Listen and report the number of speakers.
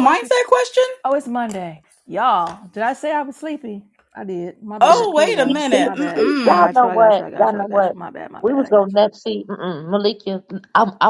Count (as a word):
three